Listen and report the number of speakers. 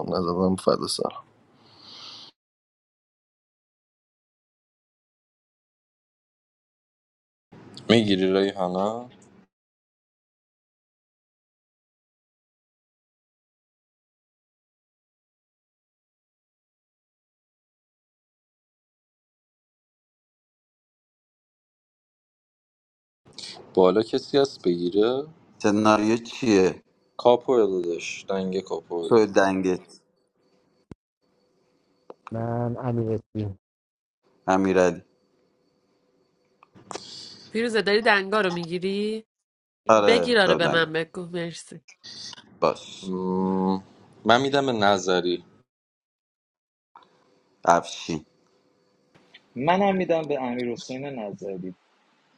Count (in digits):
6